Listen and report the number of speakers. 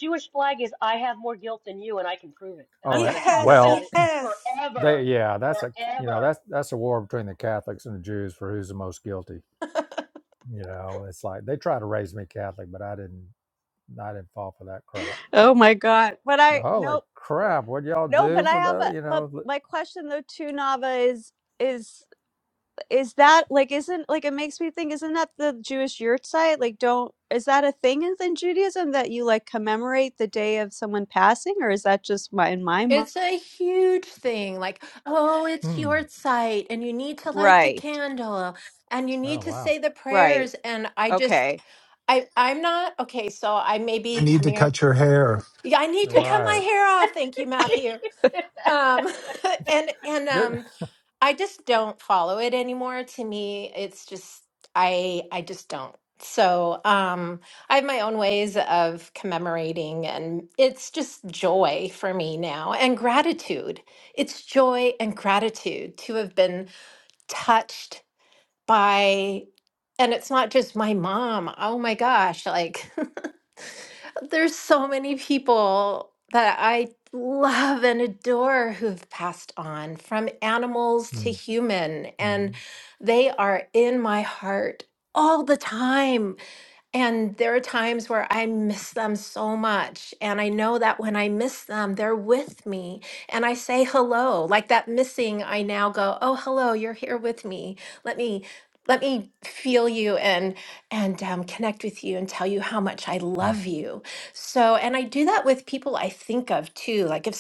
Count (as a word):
five